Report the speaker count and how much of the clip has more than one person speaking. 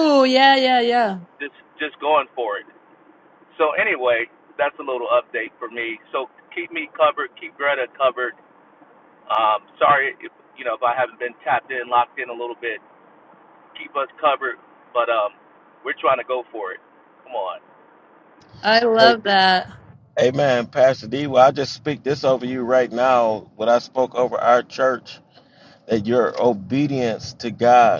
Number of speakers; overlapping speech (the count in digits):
3, about 1%